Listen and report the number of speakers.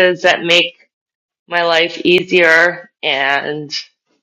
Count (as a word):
one